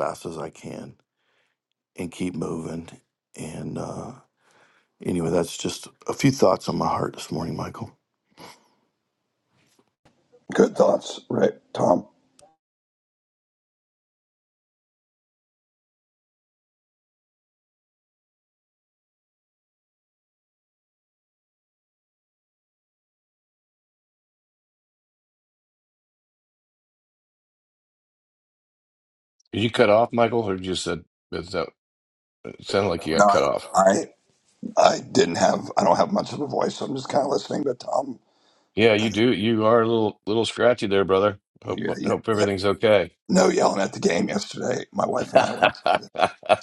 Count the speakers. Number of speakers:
three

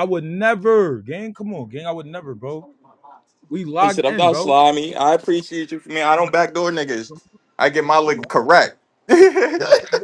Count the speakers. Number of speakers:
two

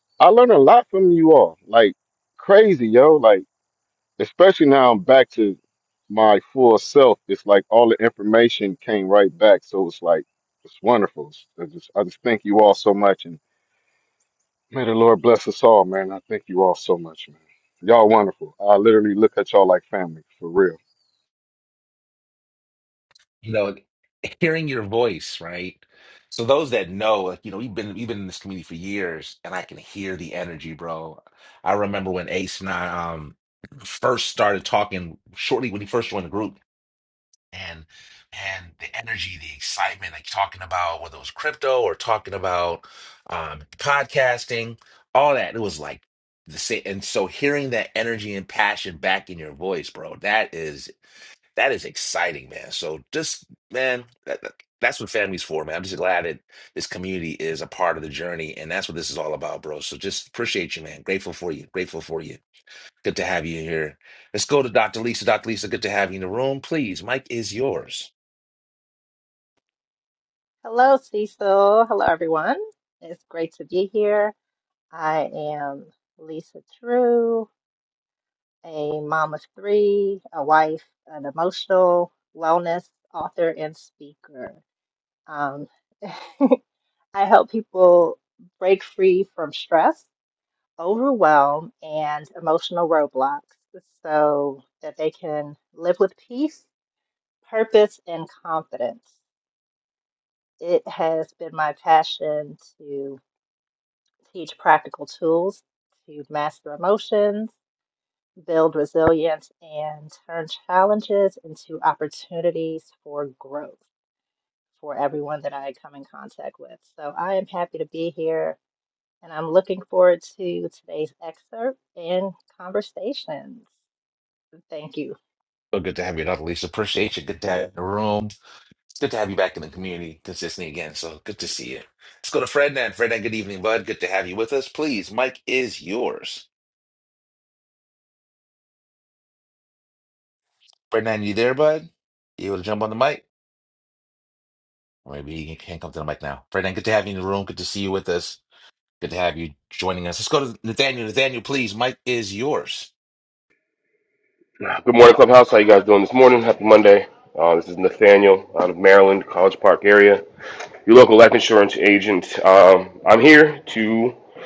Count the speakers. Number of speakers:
four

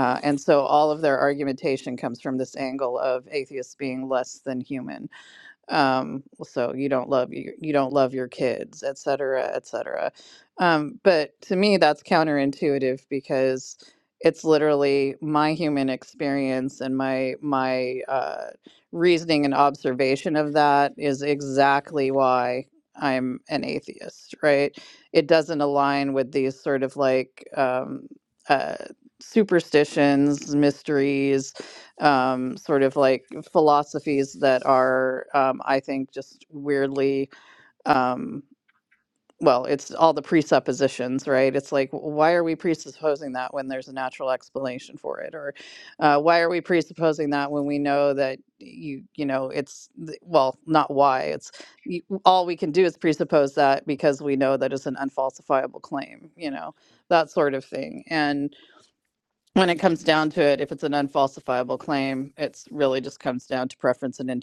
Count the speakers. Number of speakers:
one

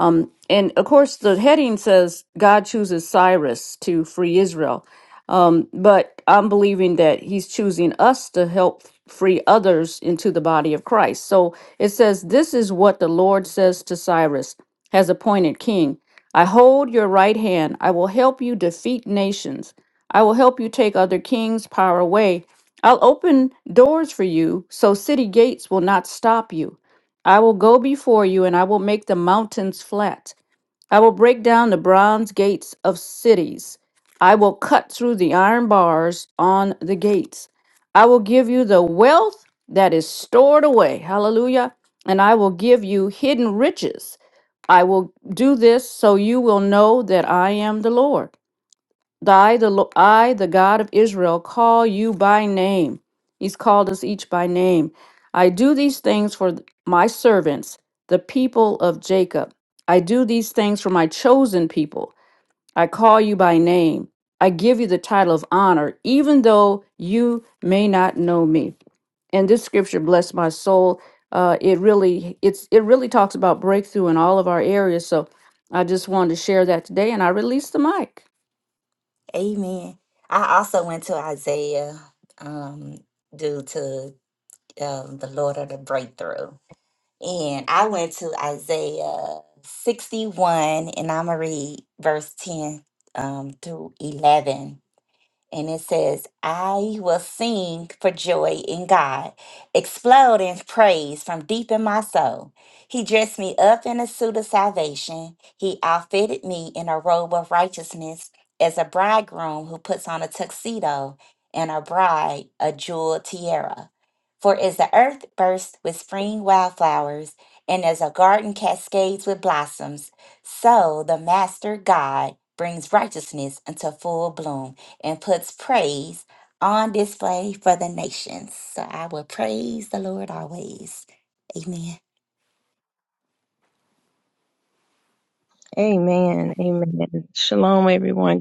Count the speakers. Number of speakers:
three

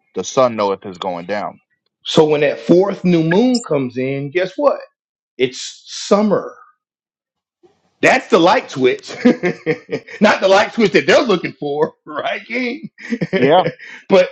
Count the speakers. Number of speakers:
two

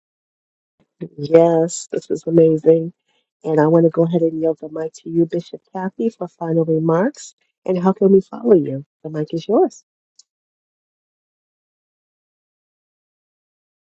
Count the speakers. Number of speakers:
one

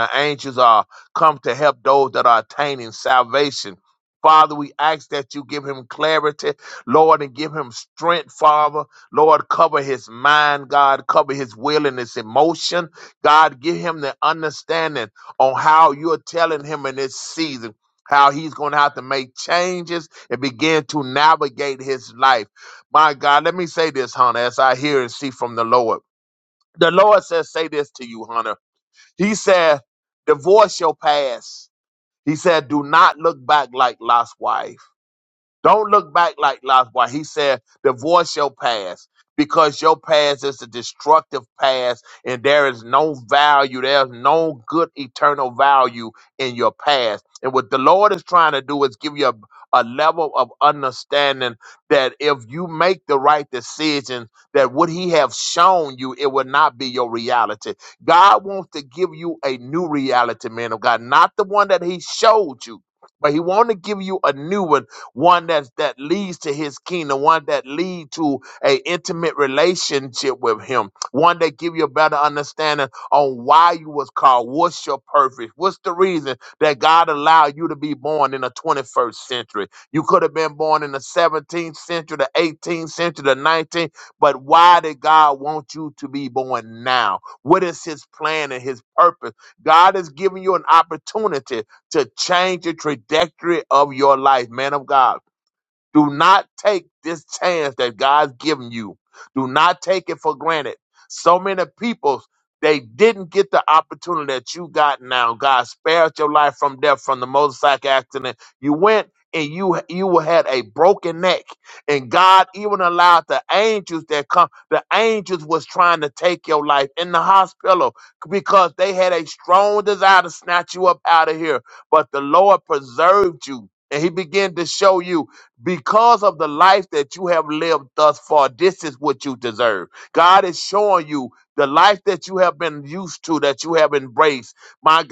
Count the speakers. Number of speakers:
one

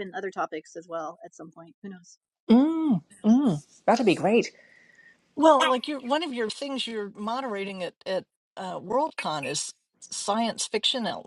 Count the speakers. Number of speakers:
three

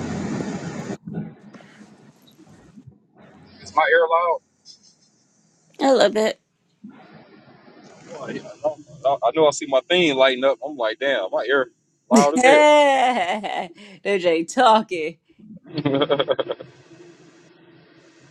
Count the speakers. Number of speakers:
two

